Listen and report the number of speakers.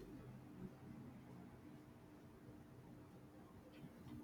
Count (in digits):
0